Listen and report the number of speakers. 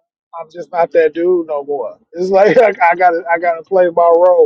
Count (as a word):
one